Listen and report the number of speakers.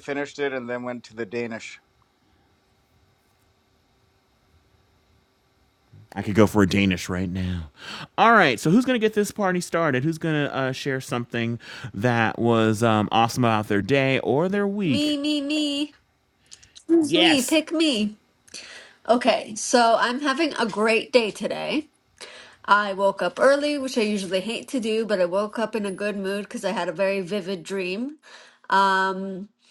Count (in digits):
3